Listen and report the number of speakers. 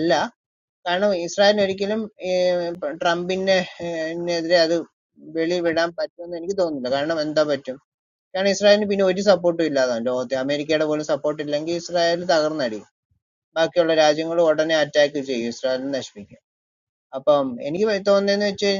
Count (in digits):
1